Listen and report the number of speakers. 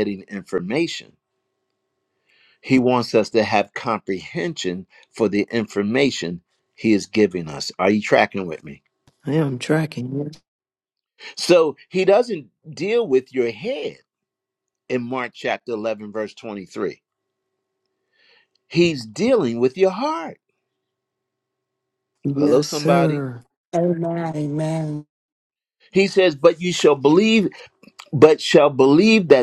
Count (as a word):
three